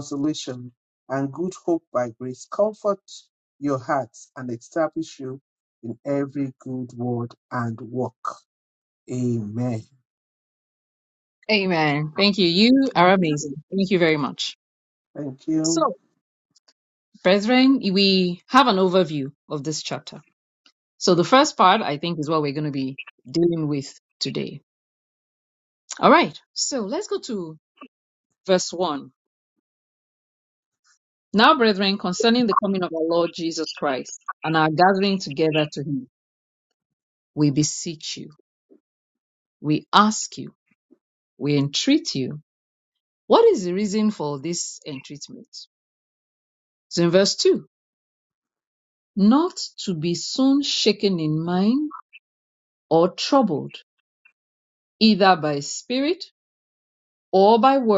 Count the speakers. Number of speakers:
two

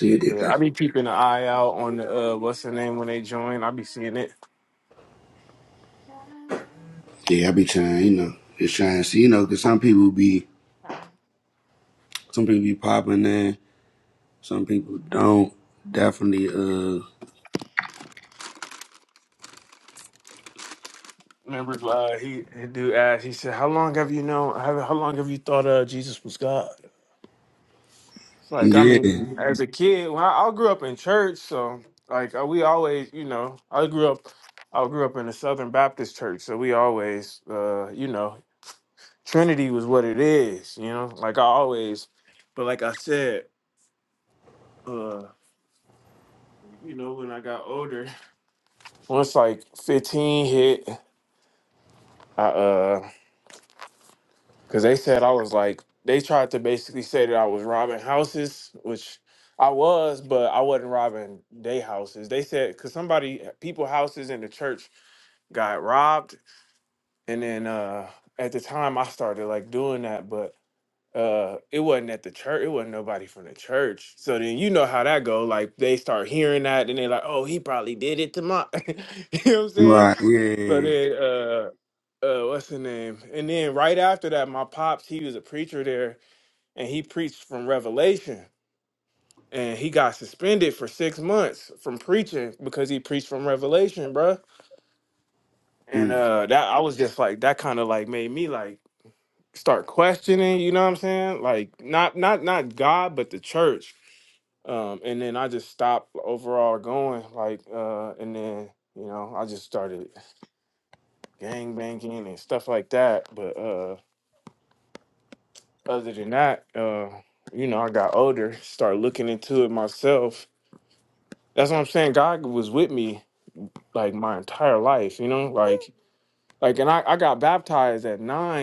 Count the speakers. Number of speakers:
two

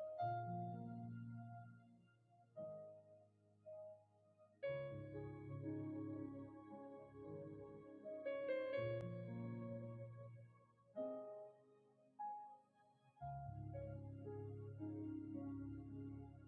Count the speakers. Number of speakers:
zero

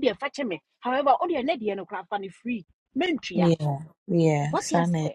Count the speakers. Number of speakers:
two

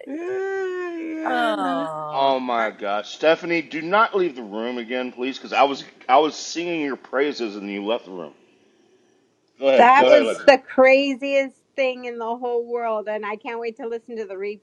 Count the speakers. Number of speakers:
four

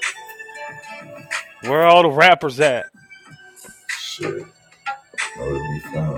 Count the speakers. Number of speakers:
two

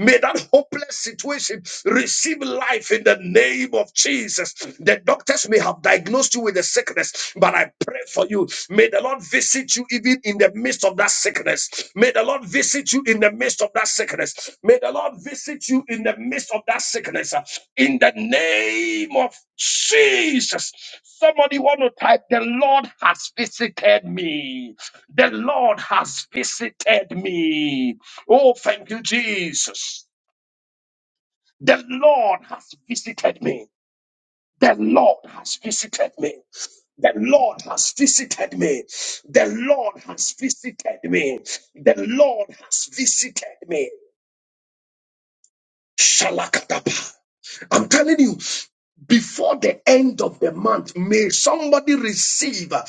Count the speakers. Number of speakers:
one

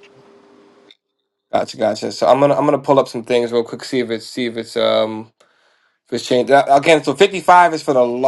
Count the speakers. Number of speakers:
one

